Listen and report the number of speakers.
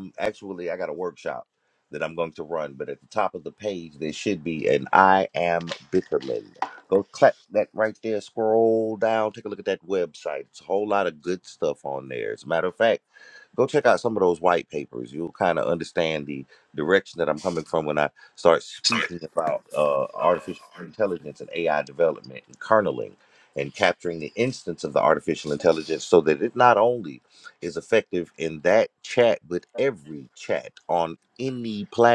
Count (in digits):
1